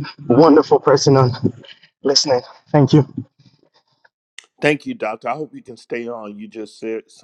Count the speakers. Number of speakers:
2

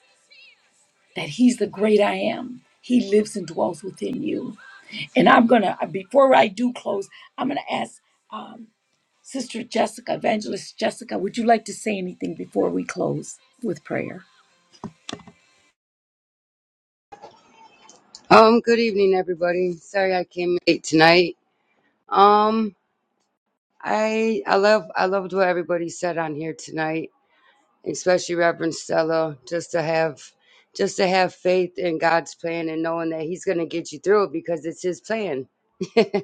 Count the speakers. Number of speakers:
2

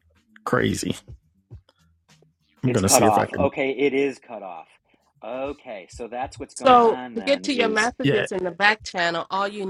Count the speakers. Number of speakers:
3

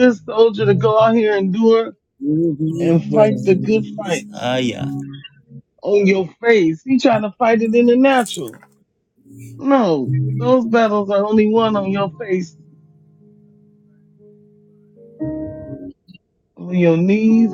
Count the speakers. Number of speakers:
2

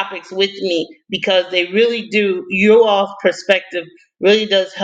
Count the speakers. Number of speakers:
1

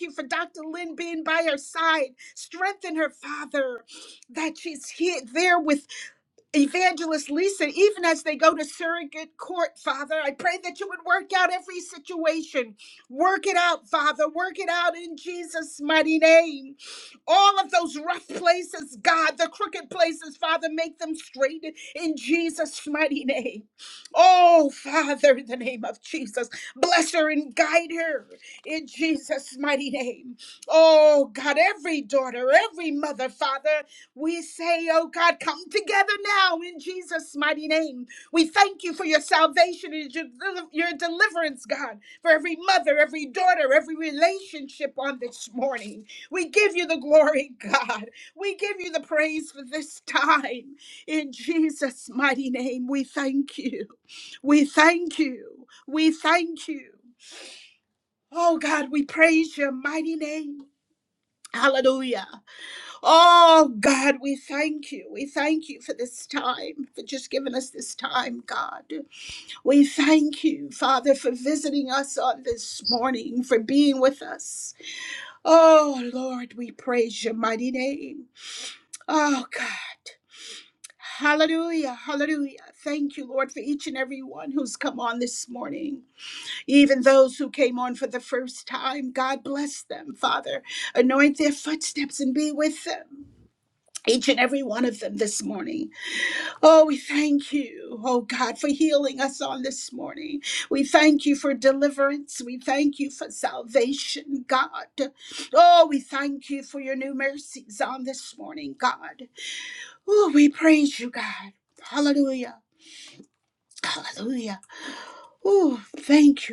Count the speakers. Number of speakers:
1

